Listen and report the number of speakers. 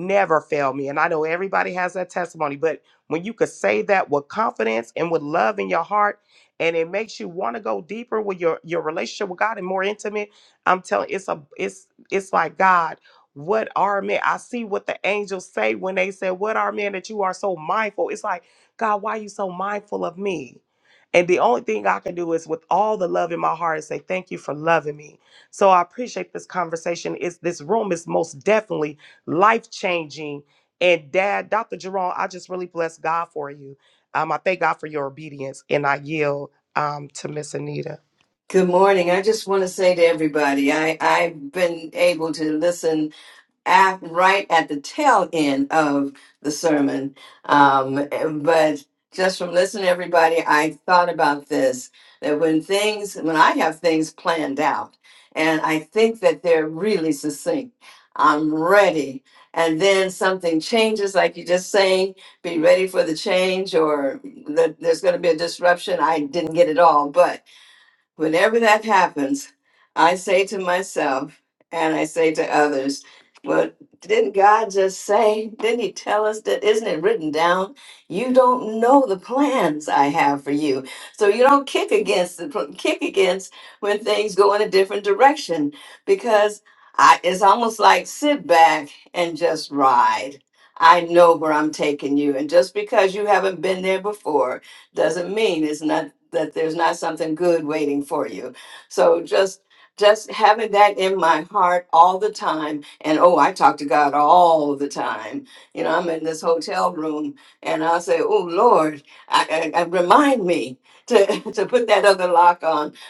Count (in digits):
2